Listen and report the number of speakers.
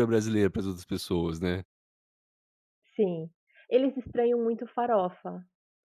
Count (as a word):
two